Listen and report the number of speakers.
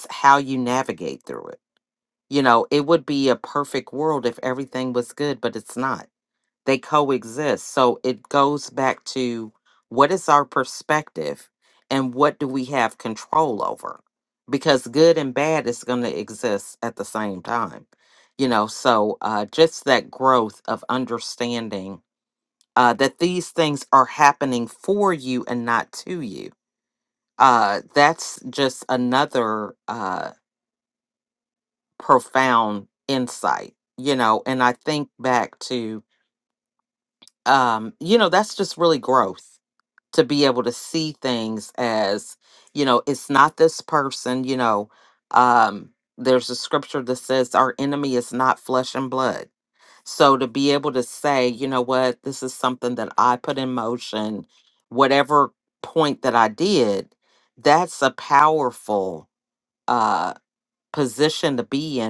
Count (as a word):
one